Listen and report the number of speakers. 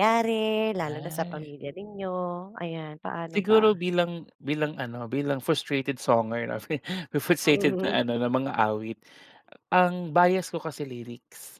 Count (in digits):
2